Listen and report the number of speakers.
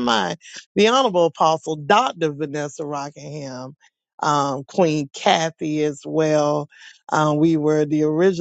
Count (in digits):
1